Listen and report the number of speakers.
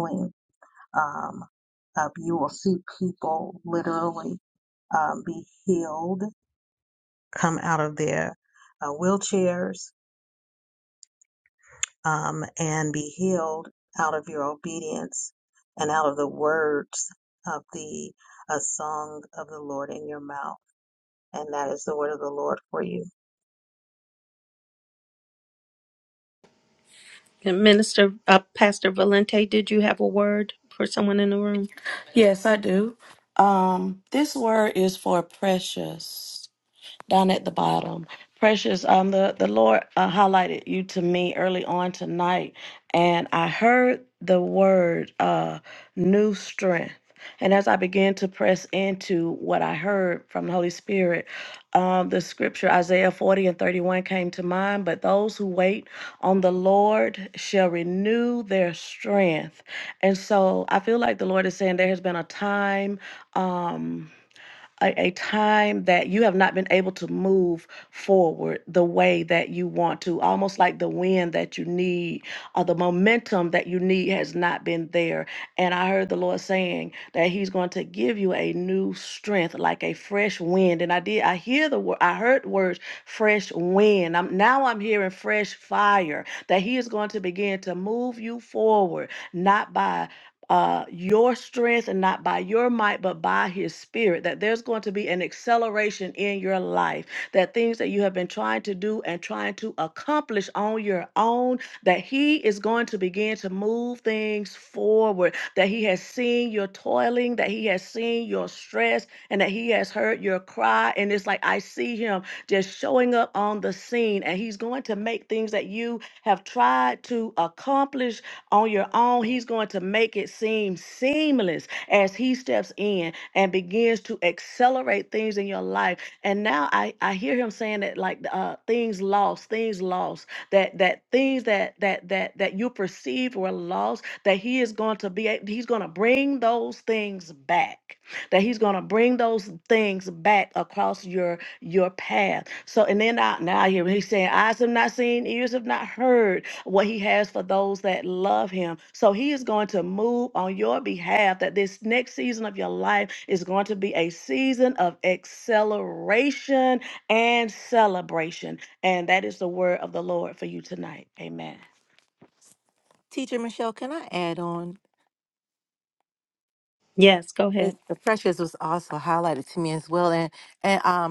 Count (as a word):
four